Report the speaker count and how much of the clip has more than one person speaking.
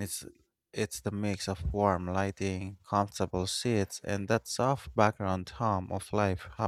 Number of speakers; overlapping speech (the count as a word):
one, no overlap